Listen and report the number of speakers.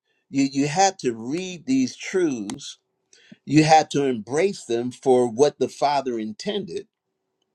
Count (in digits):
1